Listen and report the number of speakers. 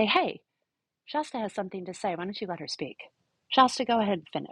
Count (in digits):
1